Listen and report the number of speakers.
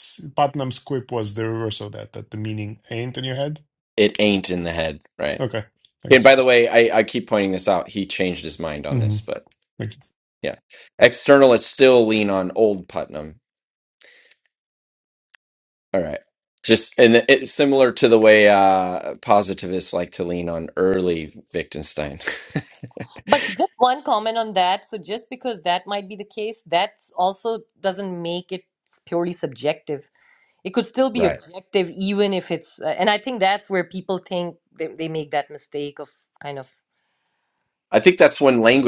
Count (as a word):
three